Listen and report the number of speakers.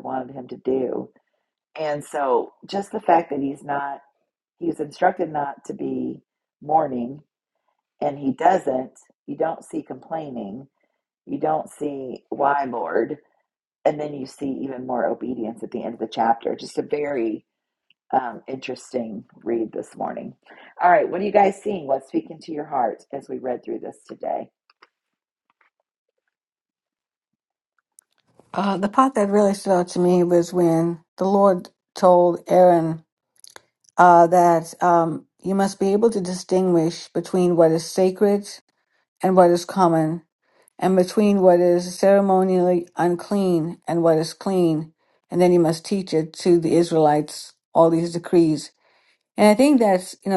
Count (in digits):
2